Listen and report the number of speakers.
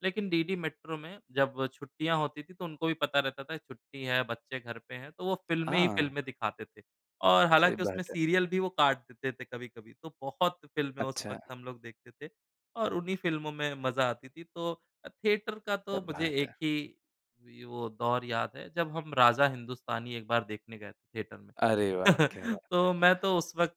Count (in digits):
2